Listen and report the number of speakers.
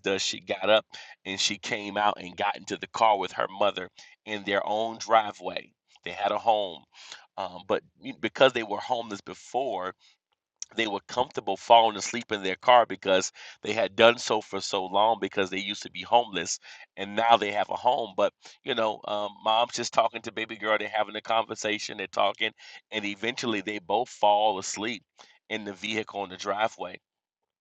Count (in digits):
1